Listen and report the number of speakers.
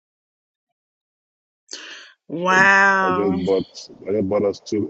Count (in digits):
2